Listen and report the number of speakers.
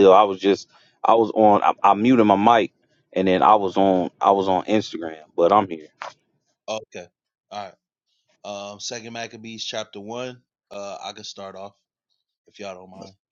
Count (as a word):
two